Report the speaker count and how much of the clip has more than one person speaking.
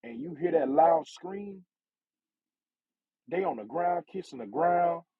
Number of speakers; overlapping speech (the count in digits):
1, no overlap